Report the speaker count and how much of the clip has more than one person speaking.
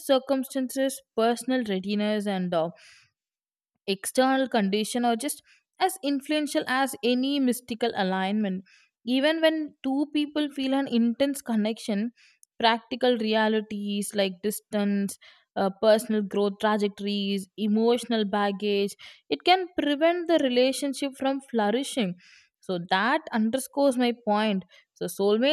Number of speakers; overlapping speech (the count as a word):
one, no overlap